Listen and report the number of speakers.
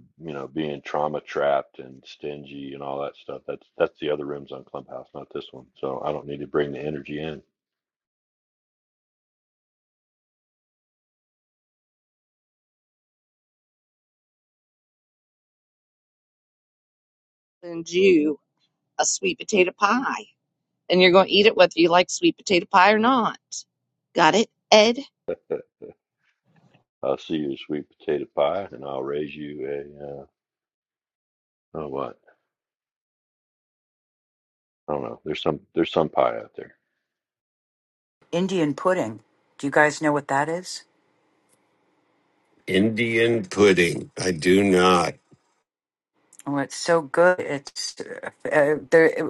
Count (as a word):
four